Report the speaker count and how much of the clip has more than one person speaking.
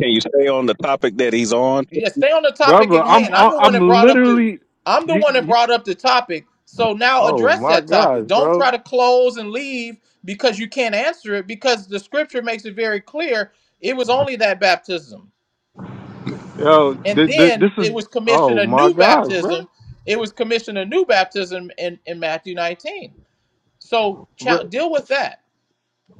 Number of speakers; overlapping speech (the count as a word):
three, about 23%